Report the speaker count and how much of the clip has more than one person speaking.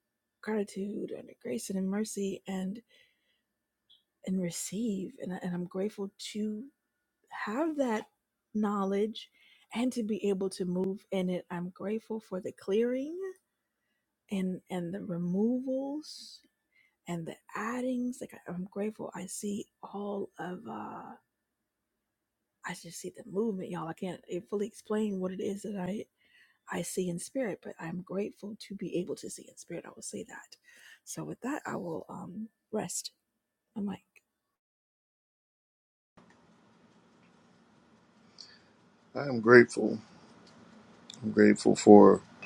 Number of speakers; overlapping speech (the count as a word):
two, no overlap